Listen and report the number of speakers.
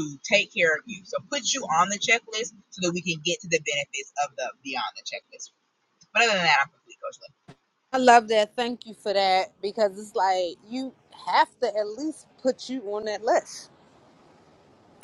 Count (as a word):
two